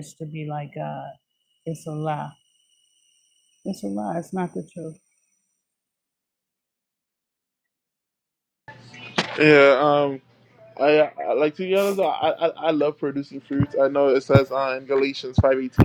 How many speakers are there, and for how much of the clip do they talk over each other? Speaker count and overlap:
two, no overlap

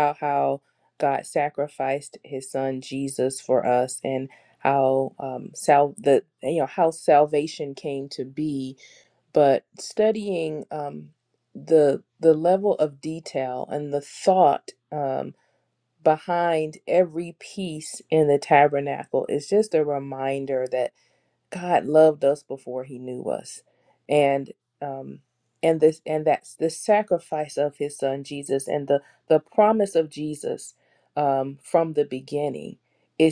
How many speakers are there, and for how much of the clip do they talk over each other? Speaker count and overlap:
one, no overlap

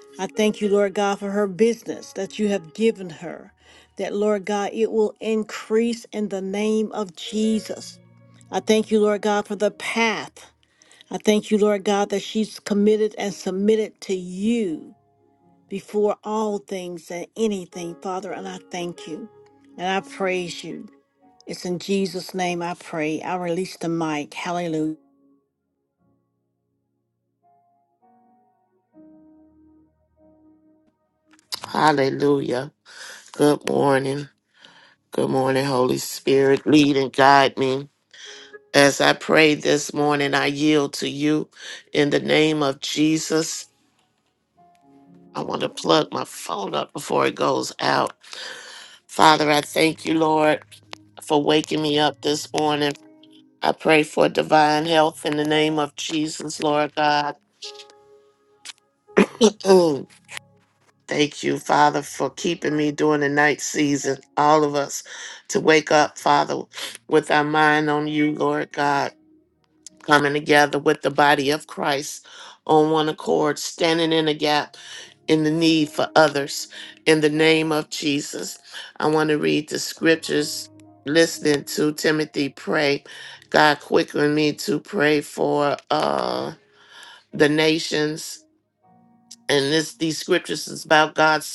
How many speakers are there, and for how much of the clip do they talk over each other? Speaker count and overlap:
two, no overlap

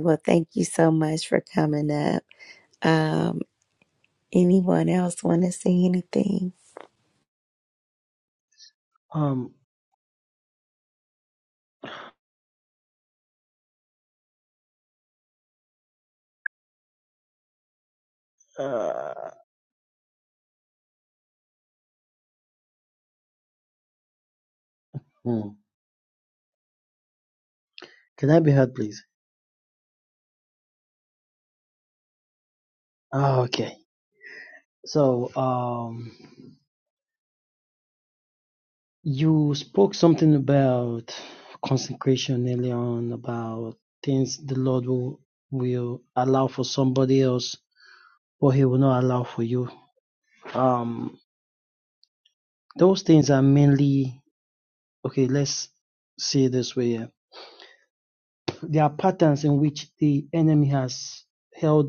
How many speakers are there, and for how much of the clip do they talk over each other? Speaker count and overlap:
two, no overlap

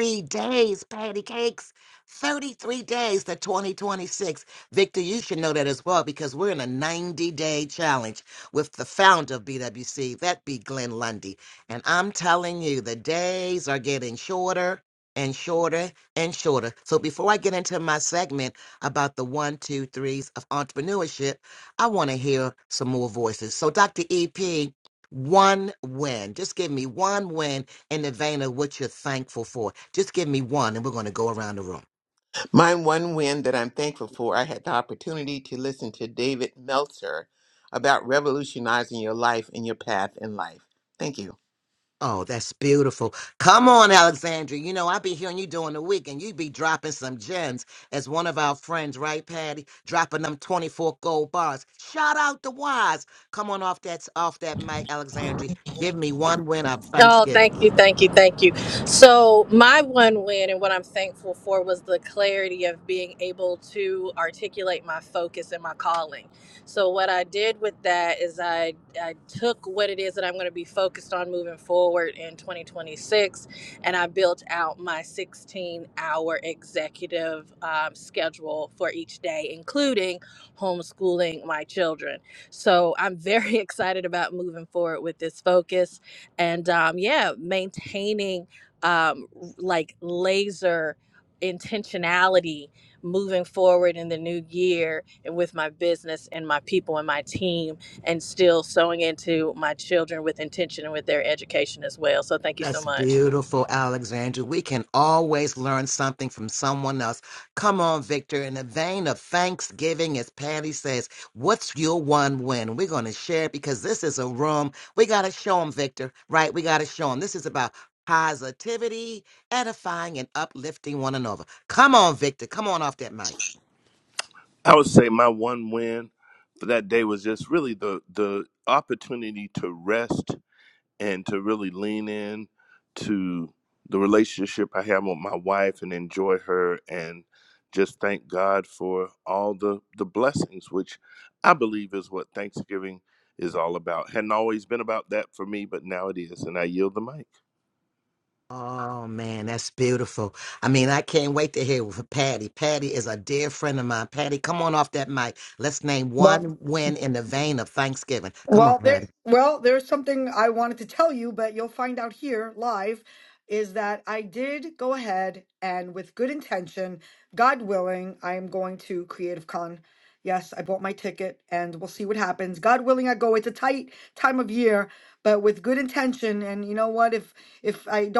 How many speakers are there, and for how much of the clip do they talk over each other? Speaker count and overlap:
five, about 1%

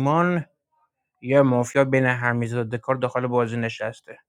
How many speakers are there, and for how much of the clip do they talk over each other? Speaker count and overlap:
one, no overlap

